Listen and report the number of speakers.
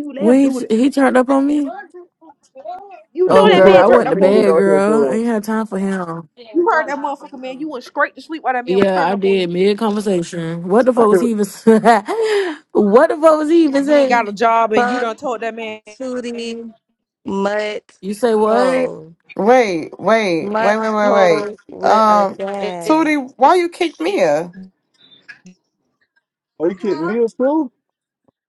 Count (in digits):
6